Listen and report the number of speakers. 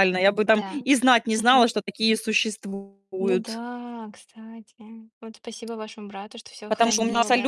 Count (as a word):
two